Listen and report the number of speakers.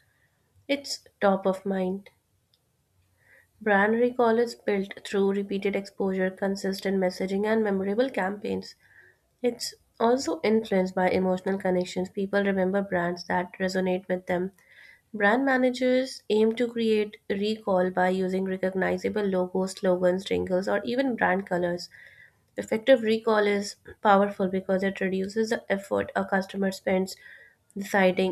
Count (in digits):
1